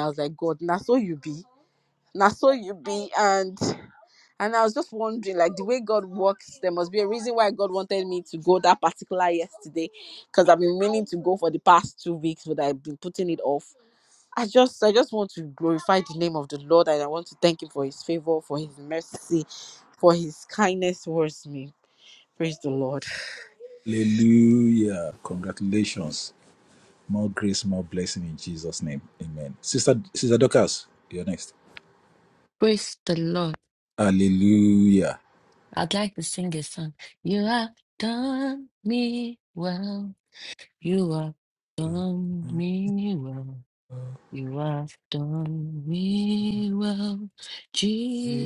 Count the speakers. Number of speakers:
3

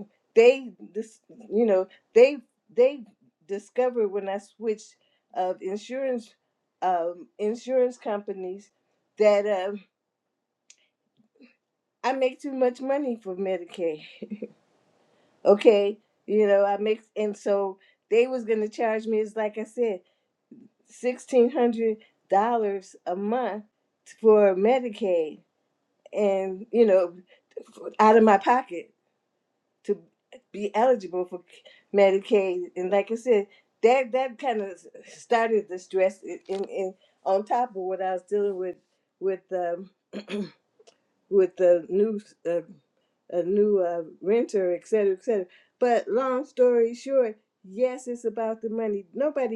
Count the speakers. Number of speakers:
1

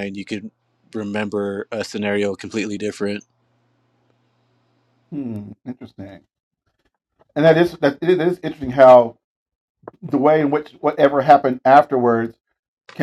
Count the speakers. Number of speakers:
2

